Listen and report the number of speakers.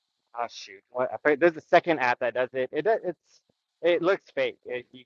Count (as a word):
one